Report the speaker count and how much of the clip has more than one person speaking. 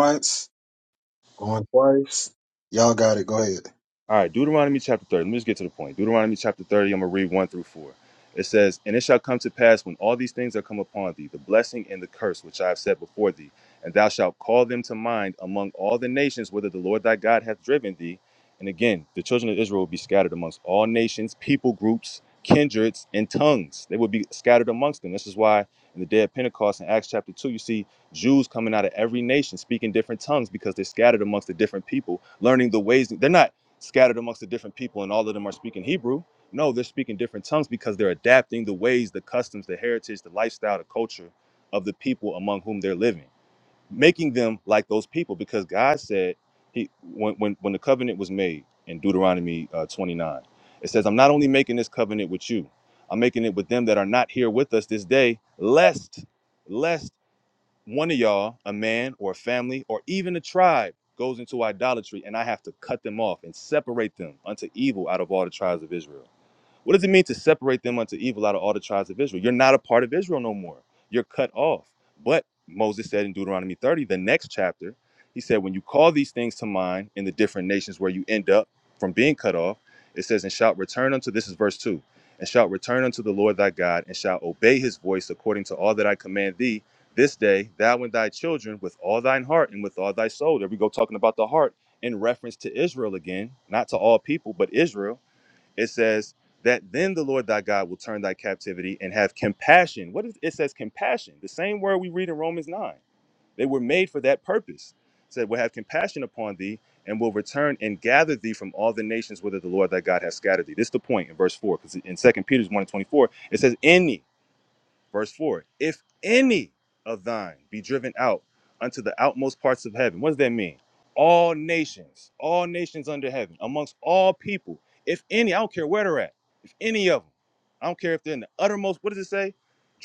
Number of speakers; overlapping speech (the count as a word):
two, no overlap